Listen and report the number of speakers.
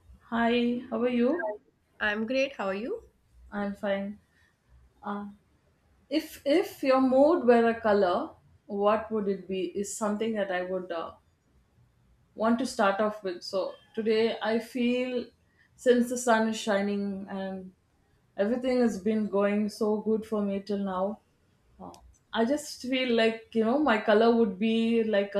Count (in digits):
2